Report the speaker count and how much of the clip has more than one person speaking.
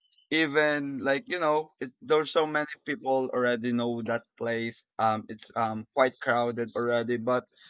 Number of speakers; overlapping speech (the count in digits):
1, no overlap